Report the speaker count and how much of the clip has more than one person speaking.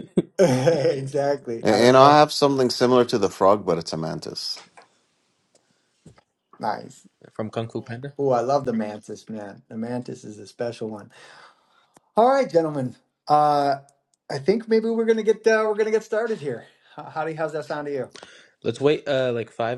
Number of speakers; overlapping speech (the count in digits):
3, about 3%